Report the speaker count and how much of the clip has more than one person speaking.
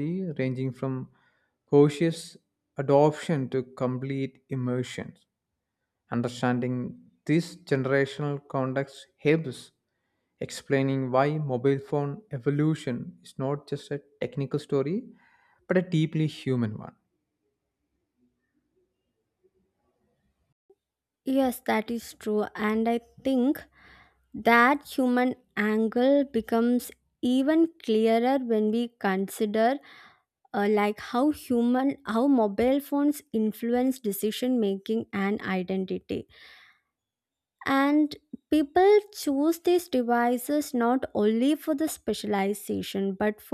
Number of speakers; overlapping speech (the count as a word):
two, no overlap